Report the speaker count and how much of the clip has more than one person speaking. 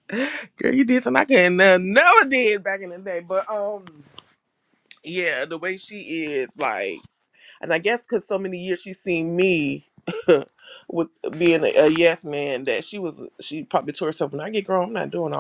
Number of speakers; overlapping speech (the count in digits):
1, no overlap